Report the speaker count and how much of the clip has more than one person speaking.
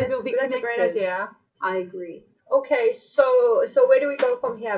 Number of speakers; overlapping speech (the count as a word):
two, about 21%